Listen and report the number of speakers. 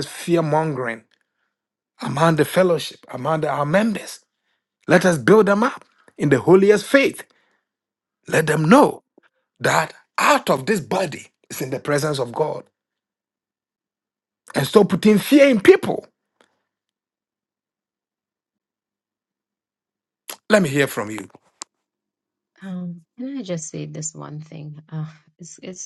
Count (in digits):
2